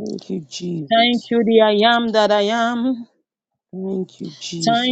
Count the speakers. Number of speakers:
two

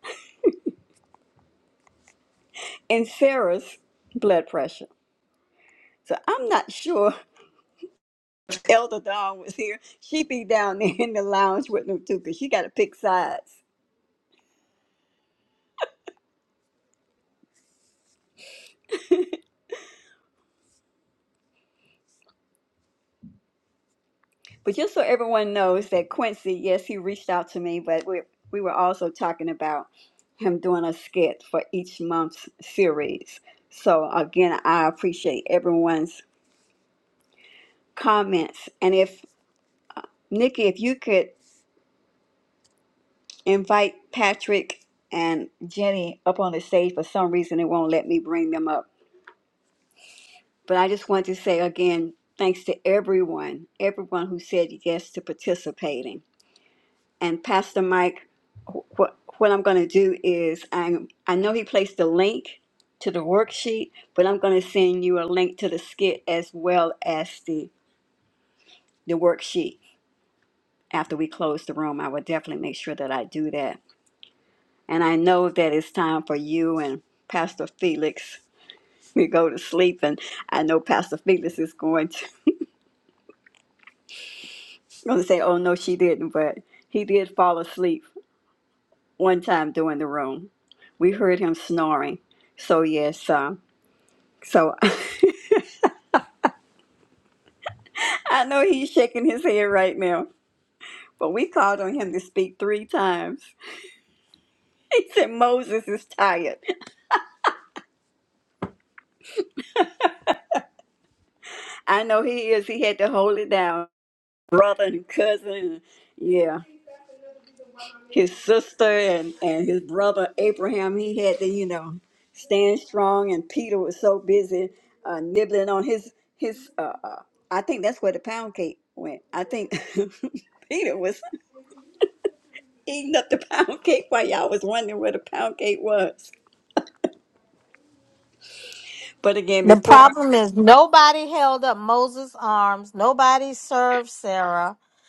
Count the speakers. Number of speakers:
two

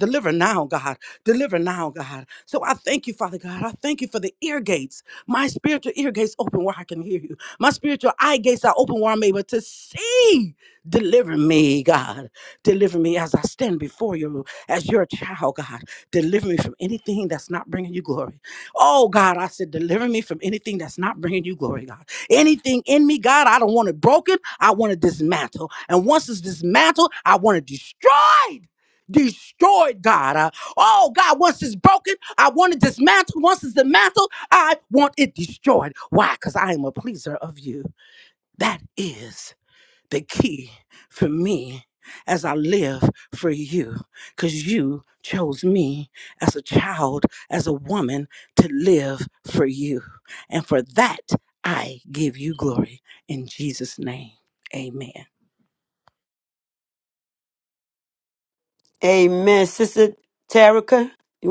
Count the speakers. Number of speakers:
two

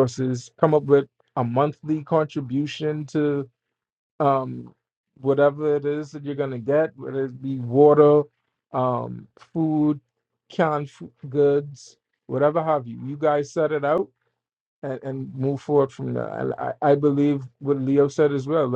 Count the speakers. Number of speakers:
one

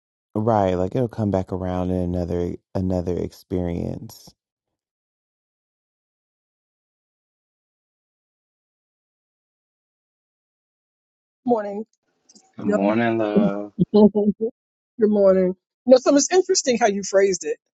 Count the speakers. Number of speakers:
three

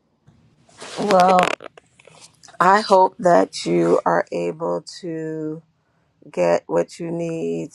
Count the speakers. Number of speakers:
one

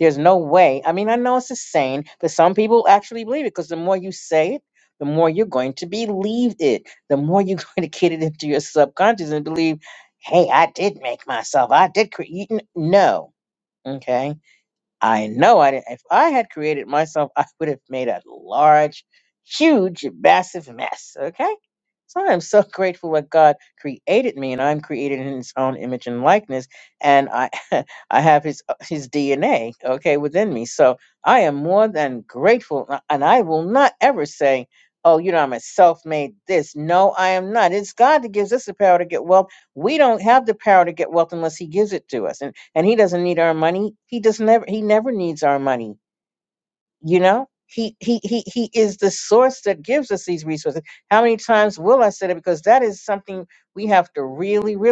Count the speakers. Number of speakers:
one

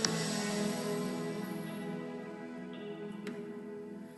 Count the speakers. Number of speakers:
zero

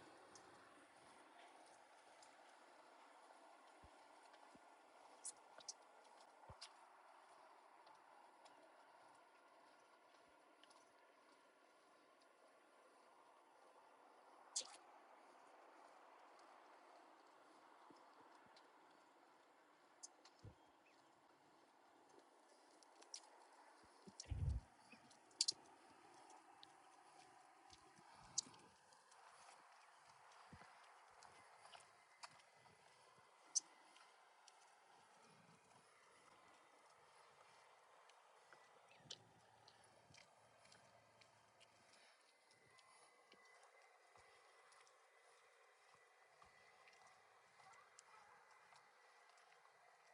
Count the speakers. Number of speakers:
zero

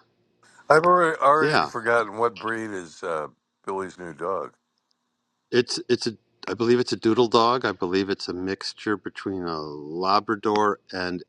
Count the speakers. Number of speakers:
two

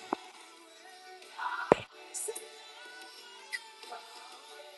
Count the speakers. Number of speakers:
zero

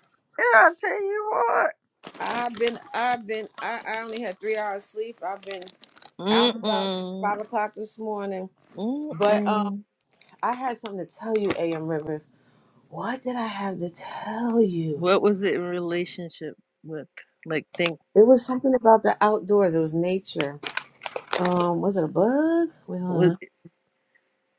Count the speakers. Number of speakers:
three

